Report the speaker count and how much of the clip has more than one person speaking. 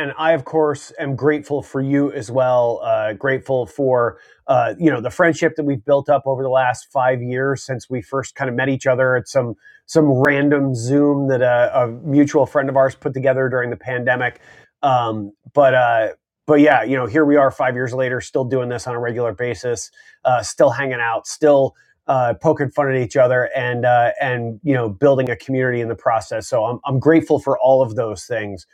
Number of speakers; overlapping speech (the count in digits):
1, no overlap